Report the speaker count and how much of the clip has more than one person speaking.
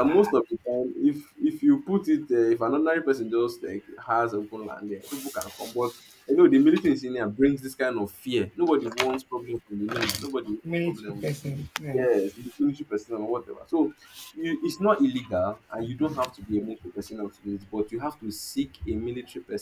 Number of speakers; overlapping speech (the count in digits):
2, about 5%